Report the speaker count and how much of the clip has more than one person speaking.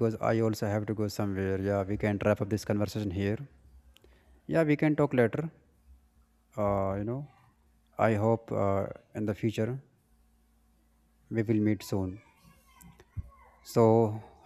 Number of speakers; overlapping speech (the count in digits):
1, no overlap